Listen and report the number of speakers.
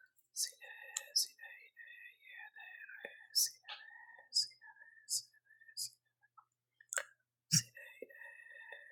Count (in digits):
0